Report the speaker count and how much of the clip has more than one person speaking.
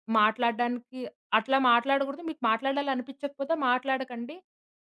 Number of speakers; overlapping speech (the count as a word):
one, no overlap